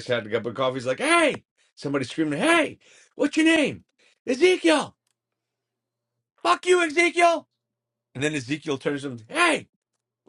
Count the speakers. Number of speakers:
1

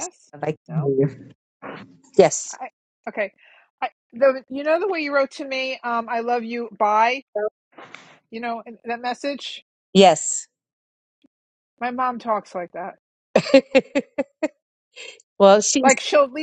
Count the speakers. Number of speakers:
2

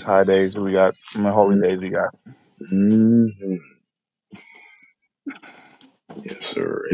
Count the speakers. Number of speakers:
2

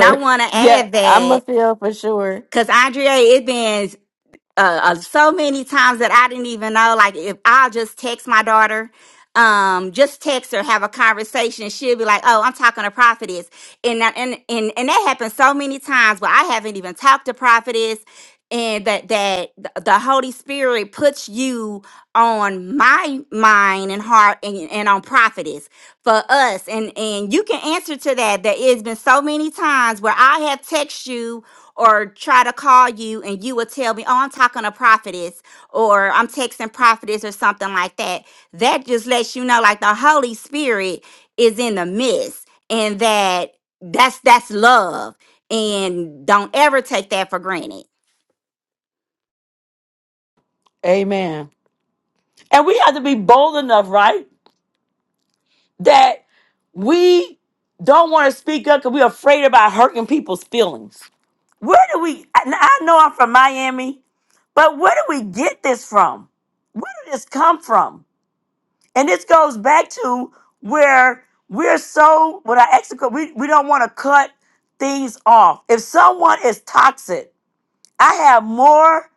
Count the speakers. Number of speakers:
3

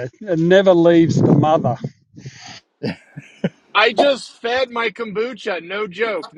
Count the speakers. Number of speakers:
2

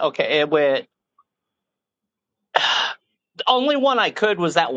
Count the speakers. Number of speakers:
1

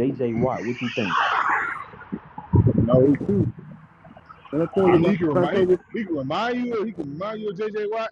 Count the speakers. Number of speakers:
3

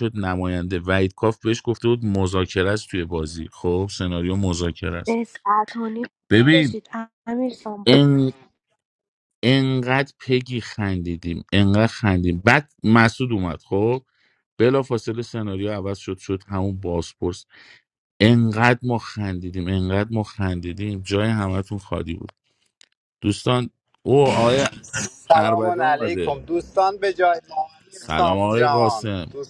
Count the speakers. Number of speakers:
3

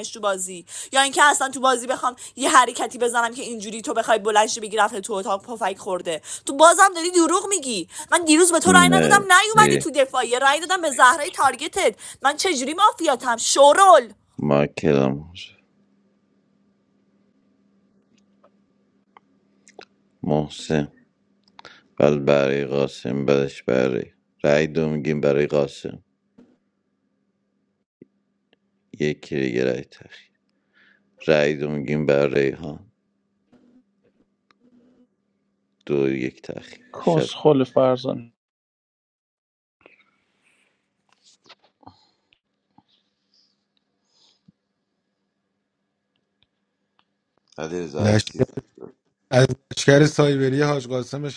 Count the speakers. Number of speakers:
4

